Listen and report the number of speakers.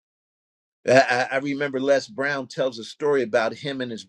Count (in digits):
1